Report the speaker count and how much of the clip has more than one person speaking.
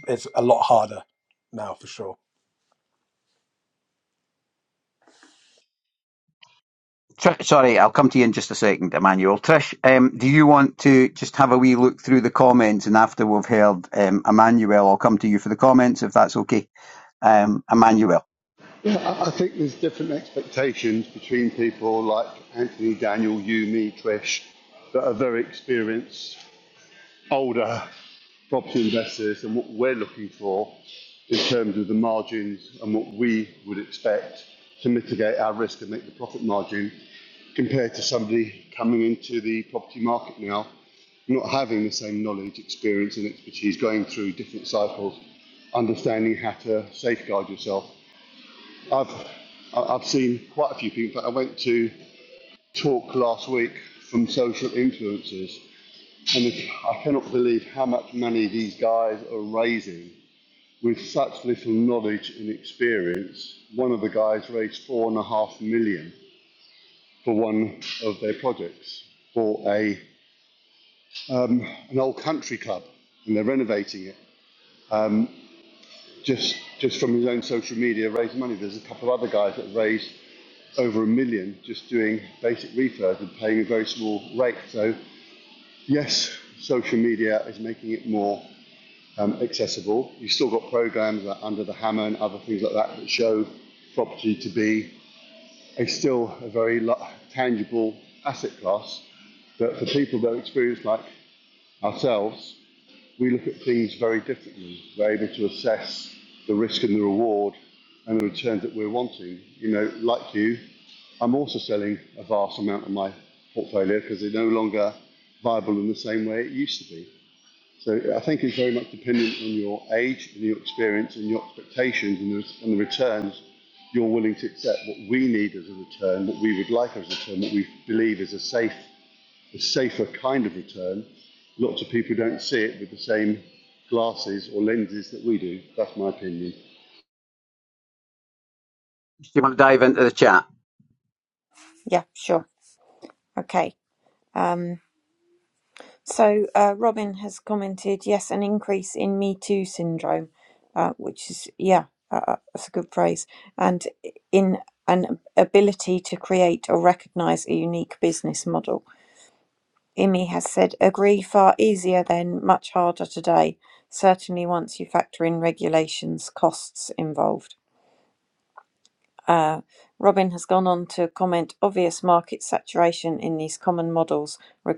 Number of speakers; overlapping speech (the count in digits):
4, no overlap